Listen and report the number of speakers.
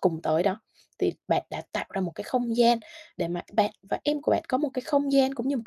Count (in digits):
1